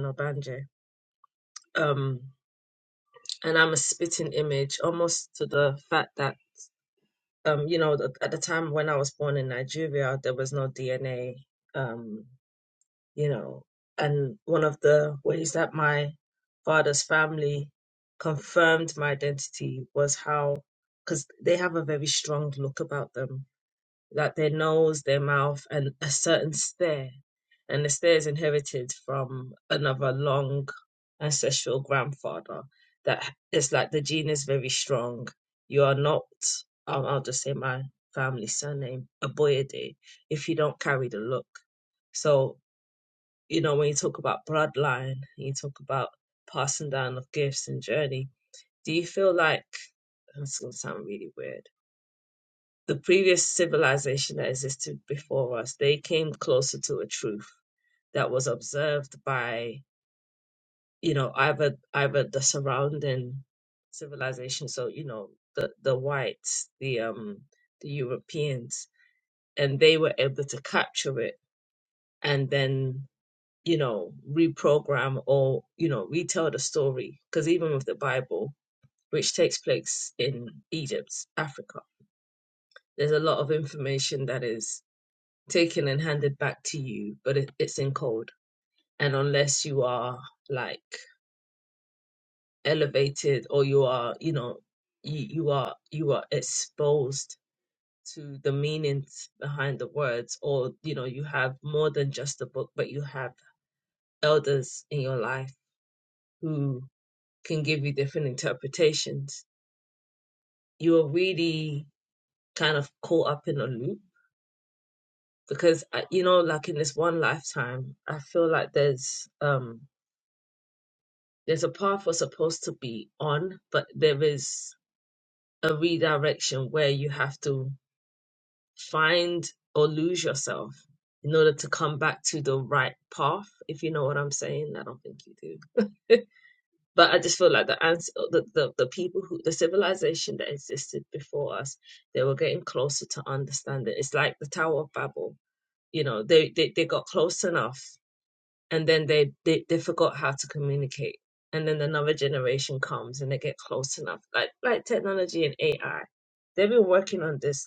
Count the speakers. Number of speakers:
1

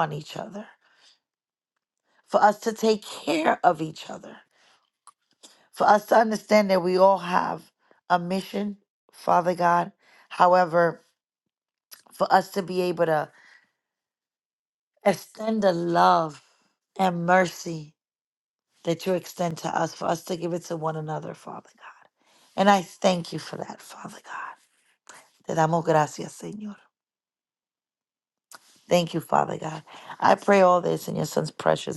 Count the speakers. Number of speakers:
1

